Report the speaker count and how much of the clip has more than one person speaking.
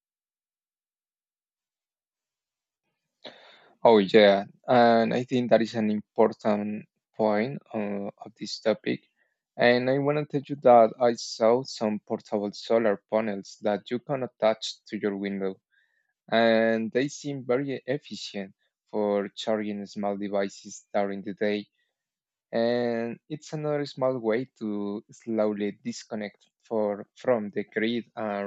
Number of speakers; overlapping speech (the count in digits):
1, no overlap